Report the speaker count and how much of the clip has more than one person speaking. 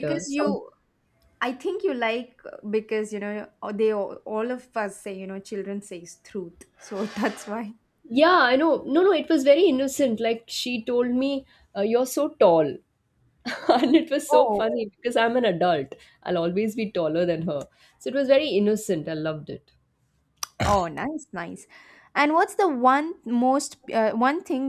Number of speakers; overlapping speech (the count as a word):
two, about 4%